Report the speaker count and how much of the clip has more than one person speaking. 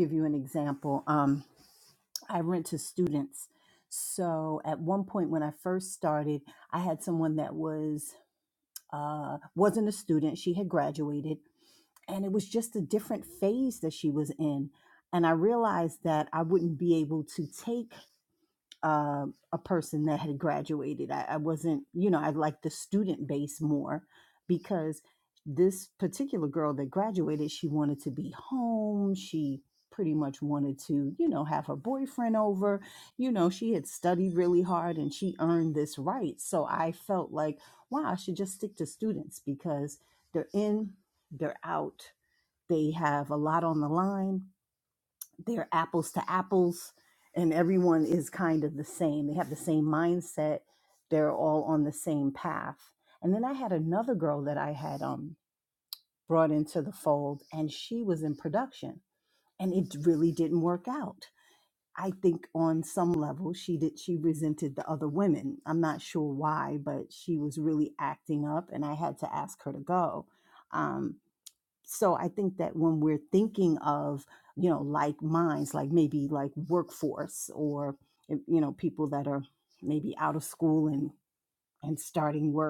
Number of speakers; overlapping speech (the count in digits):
1, no overlap